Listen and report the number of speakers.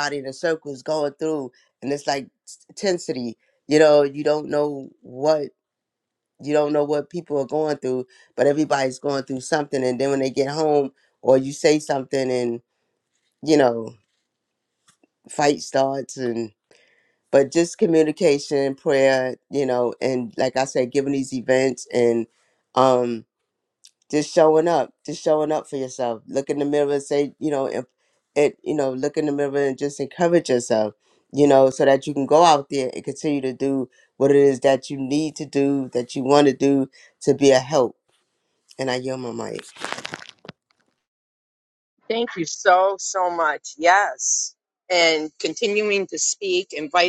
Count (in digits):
2